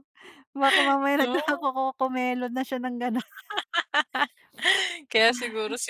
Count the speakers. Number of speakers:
two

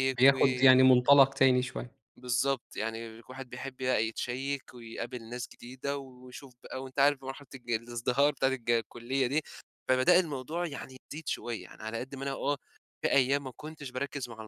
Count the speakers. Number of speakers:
two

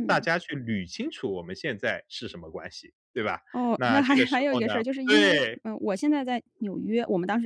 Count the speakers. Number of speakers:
two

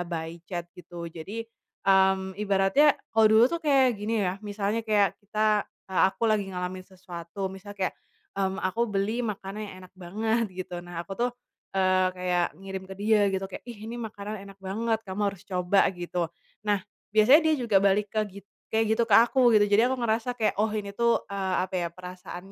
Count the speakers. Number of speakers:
one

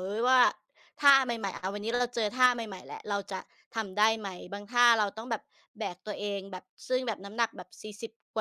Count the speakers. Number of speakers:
one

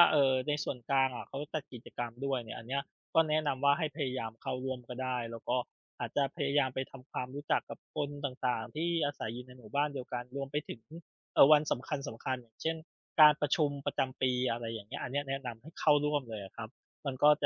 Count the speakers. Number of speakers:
one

